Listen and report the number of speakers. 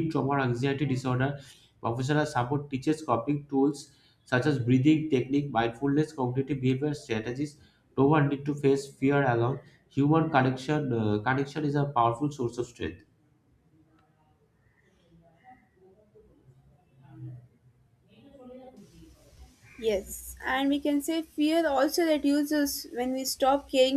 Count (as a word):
two